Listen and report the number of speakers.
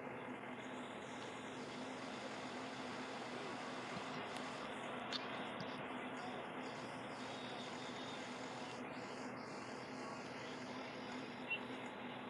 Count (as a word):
zero